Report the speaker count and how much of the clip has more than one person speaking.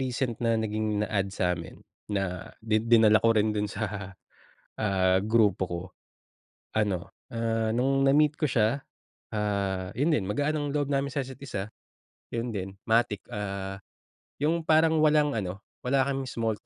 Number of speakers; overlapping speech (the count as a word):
one, no overlap